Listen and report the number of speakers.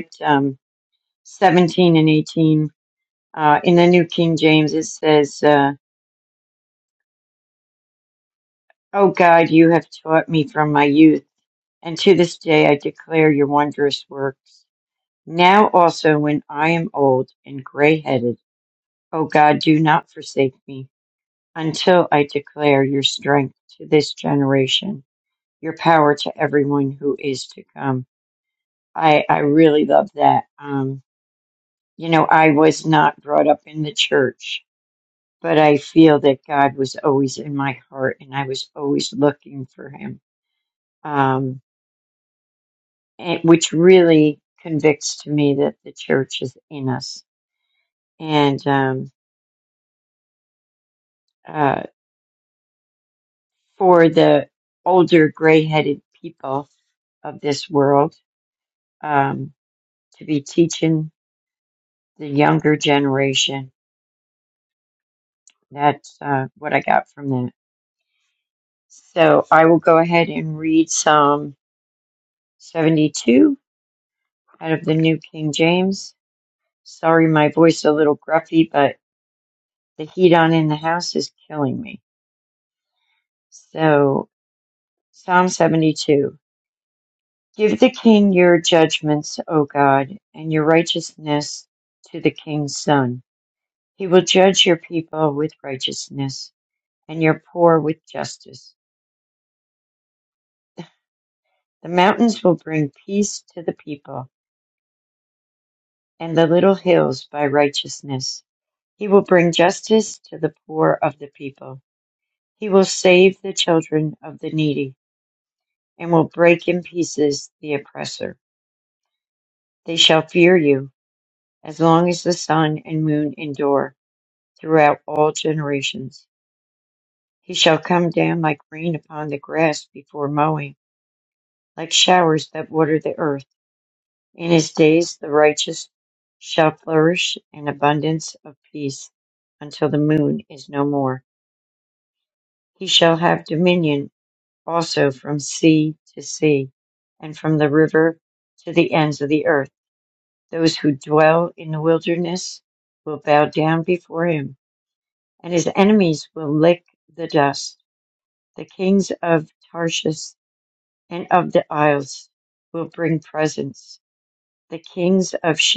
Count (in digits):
1